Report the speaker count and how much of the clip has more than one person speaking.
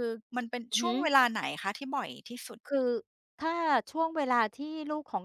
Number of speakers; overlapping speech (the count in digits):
2, about 3%